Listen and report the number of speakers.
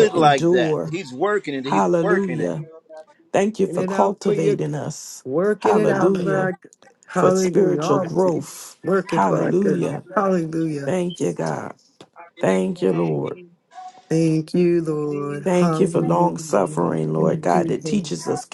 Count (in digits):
4